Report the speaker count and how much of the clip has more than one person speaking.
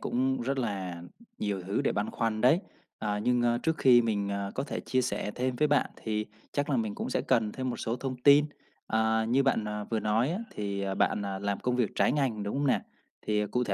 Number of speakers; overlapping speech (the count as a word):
one, no overlap